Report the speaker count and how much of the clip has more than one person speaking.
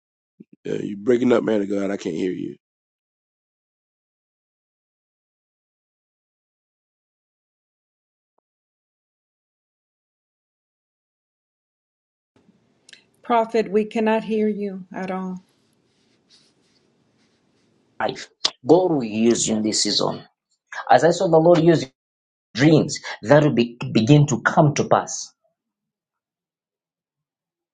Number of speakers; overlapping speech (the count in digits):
3, no overlap